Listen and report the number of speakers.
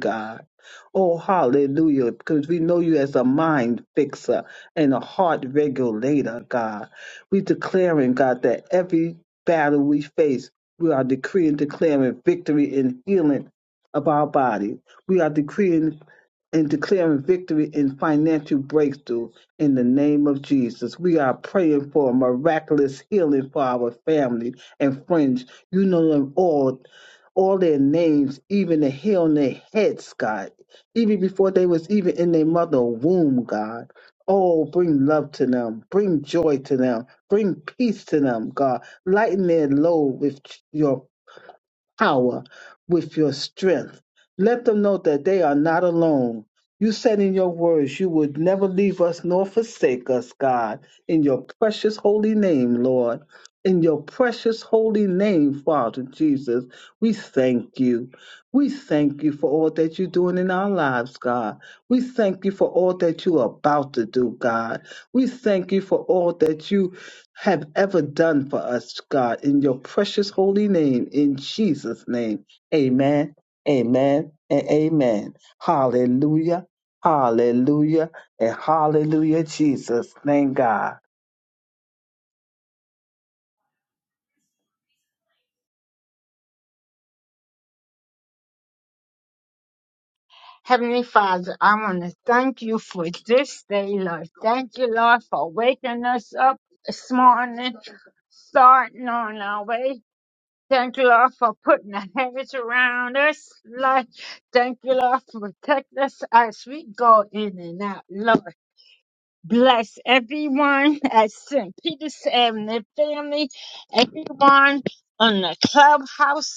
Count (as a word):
two